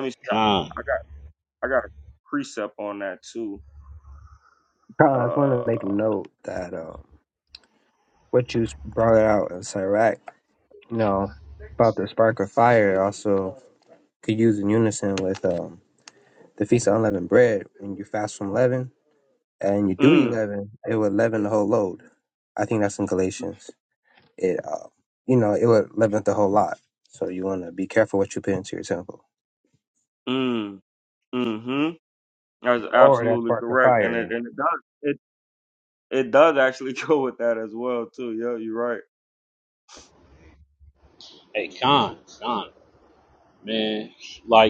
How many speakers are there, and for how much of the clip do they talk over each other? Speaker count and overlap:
three, about 5%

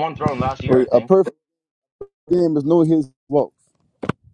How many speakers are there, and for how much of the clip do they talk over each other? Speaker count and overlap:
two, about 5%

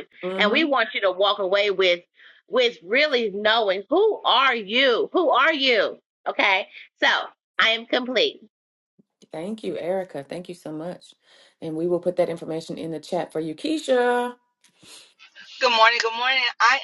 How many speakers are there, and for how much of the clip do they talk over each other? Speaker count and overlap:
three, about 3%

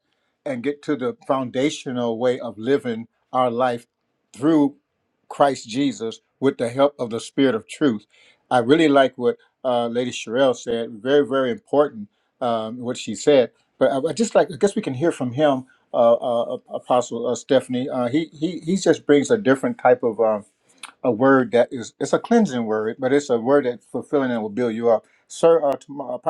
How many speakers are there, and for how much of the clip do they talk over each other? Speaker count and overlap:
one, no overlap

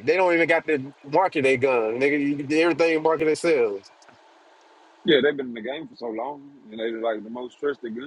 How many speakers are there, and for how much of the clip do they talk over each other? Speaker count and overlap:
two, no overlap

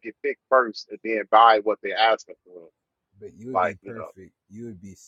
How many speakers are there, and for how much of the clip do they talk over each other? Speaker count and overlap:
two, about 11%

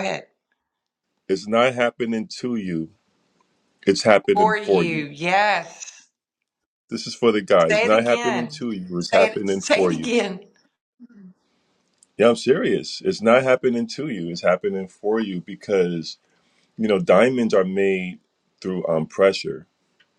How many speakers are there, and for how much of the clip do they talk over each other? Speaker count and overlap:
two, about 12%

